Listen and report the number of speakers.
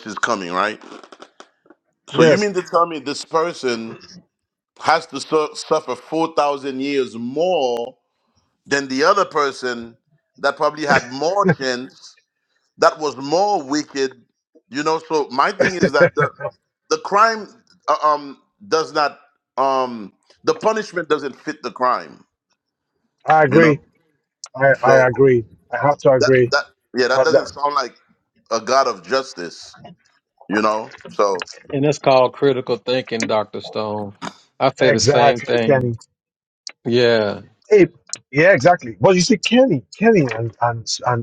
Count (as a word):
three